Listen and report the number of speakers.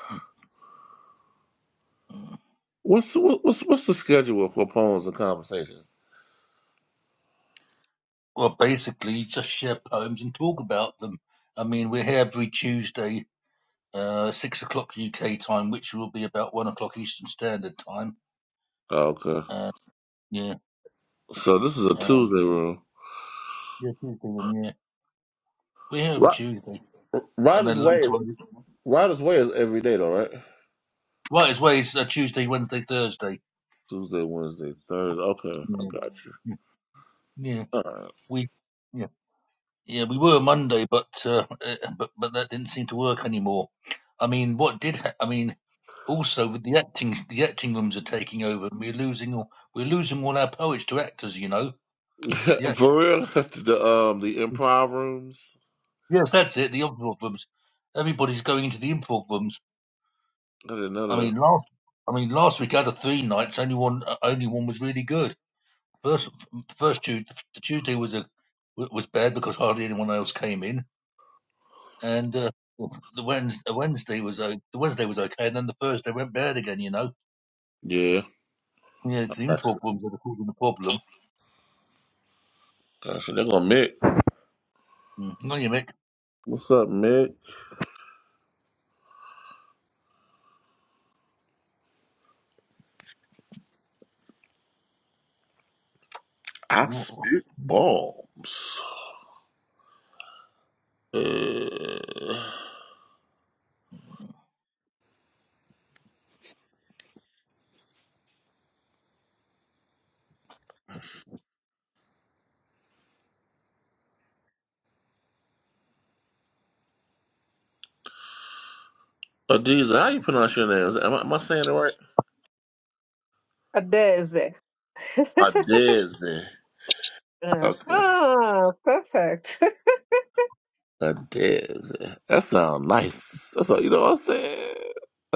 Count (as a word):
three